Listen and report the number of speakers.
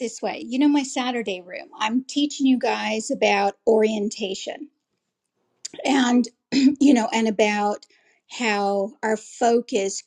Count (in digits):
1